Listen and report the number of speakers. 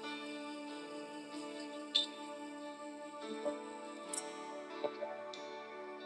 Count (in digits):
0